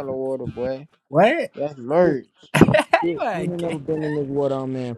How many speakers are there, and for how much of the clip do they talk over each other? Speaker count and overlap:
3, about 16%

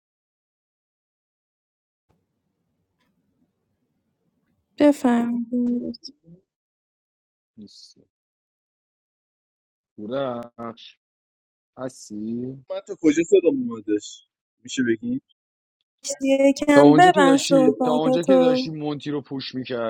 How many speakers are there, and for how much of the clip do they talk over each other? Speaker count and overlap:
3, about 8%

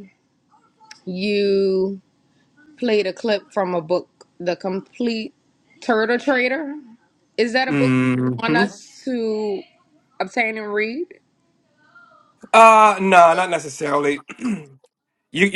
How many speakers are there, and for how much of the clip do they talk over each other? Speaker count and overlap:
2, about 4%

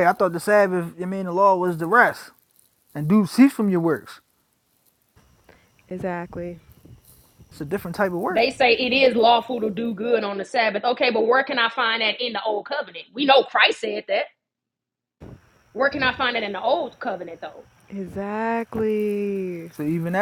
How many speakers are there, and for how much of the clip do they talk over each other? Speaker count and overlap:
3, about 1%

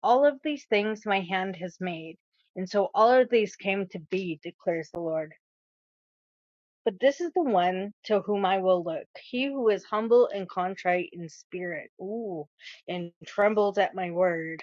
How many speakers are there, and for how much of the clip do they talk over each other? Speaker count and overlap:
1, no overlap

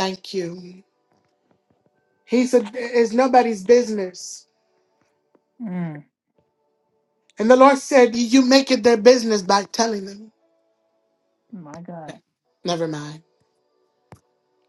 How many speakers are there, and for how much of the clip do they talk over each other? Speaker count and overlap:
2, no overlap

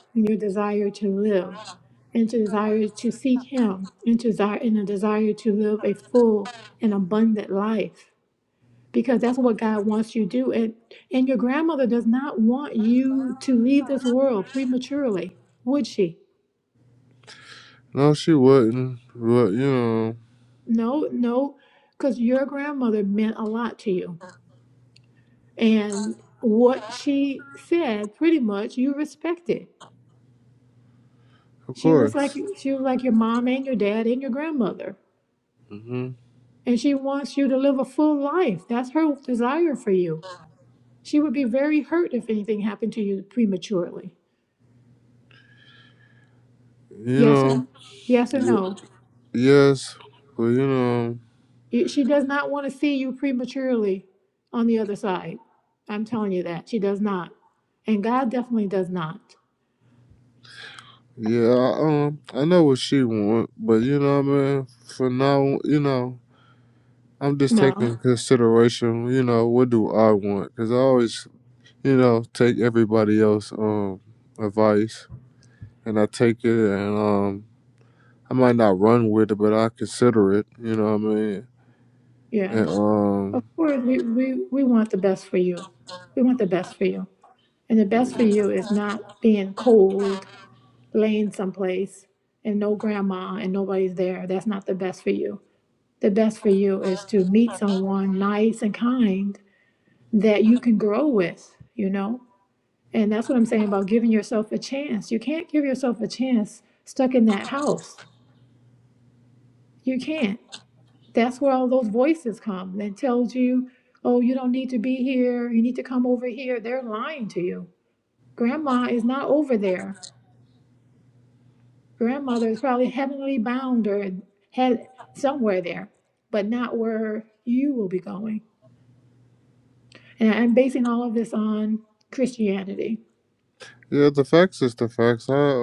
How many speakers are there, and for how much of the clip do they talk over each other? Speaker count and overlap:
2, about 1%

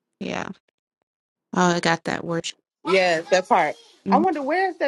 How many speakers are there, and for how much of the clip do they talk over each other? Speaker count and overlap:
2, about 3%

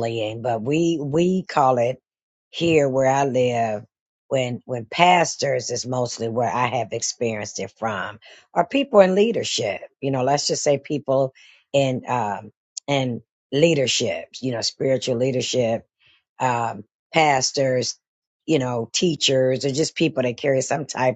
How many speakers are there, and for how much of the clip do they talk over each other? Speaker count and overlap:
1, no overlap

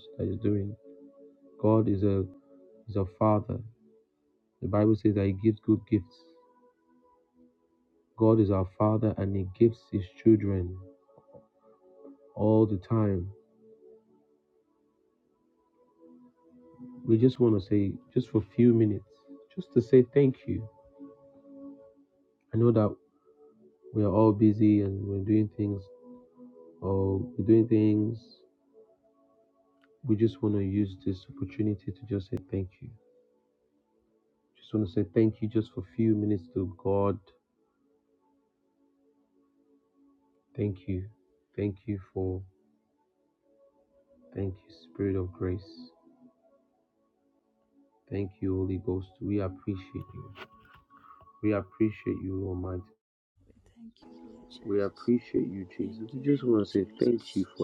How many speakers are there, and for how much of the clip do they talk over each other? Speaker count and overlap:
2, about 4%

